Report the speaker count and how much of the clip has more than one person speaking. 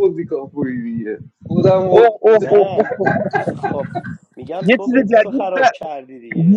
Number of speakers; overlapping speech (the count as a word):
three, about 31%